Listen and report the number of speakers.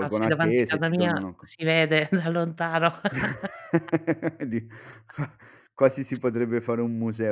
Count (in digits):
2